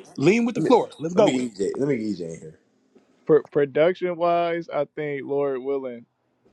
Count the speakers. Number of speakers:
3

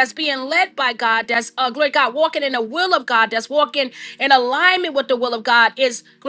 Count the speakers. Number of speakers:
1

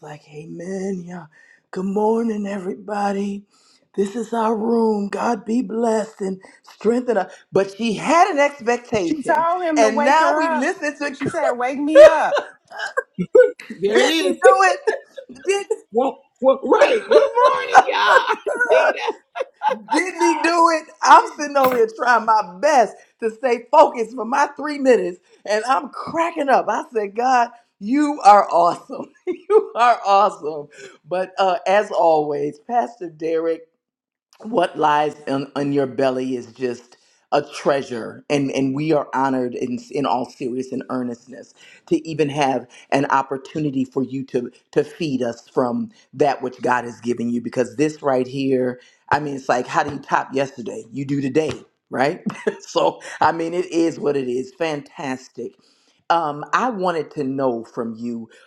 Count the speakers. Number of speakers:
3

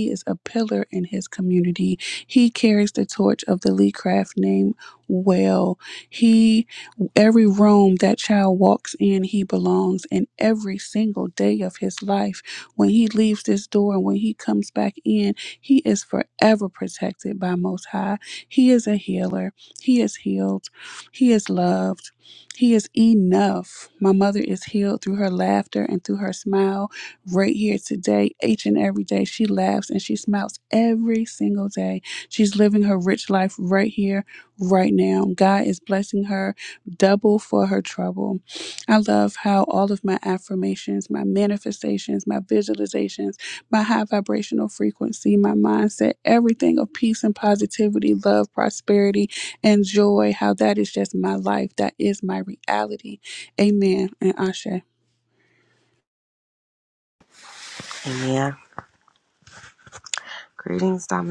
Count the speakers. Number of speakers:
2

